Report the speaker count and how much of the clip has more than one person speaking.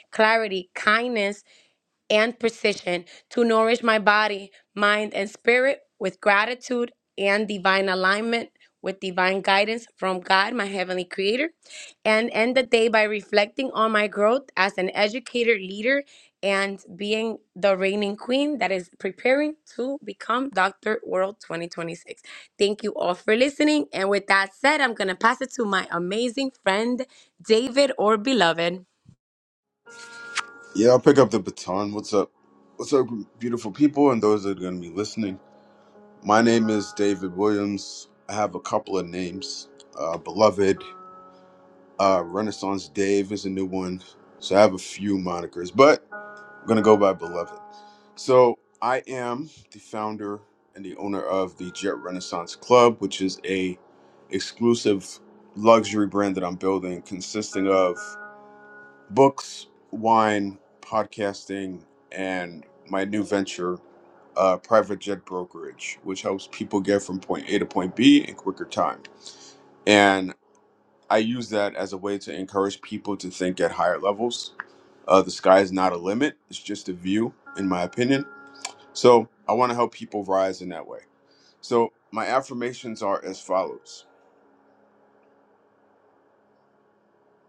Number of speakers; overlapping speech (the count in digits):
2, no overlap